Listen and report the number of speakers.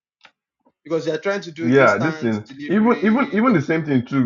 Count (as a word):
two